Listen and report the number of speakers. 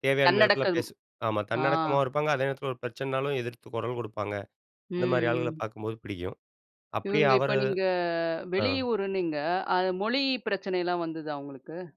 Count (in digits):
2